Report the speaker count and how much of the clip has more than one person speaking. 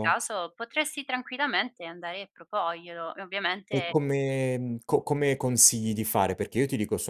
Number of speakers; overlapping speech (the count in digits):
2, about 5%